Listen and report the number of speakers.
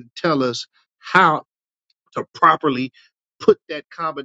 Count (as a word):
one